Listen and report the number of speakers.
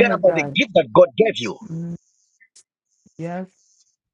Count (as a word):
two